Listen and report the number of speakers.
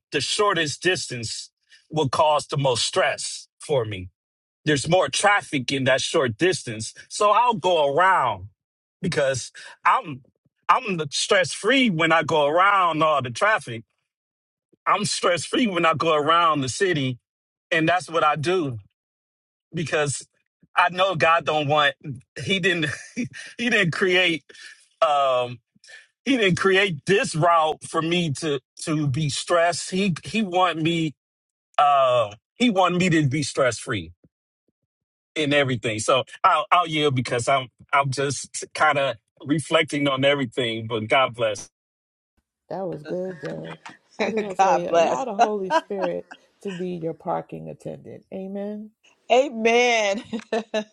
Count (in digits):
3